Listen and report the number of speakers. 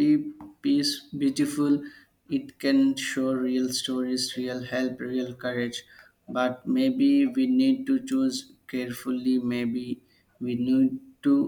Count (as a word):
one